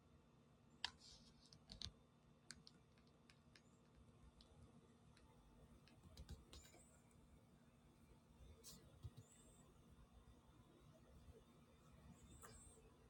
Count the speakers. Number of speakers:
0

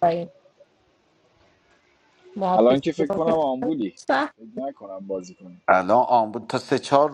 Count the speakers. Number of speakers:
3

